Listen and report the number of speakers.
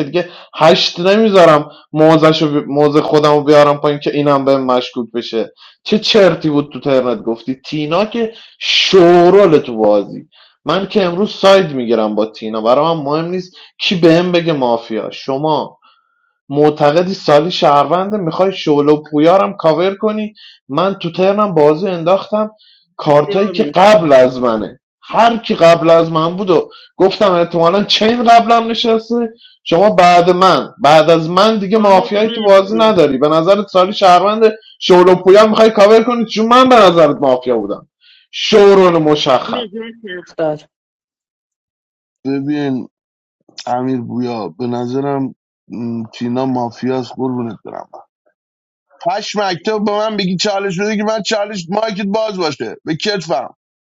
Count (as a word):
three